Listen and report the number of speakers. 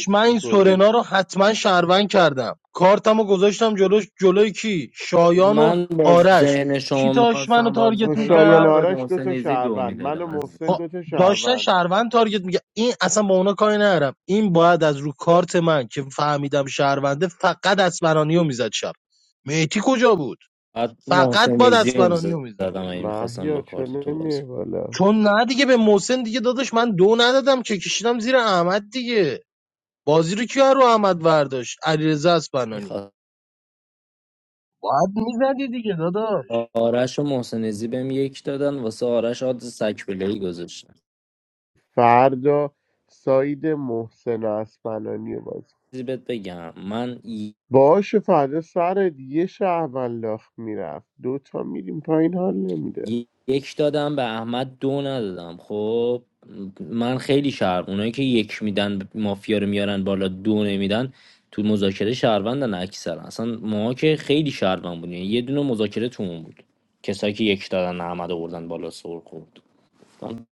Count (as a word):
three